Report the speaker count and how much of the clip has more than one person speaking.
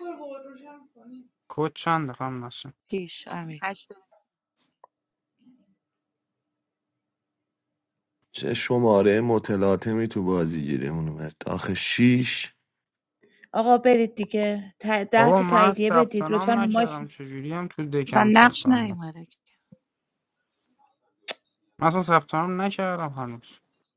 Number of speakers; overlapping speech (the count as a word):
four, about 11%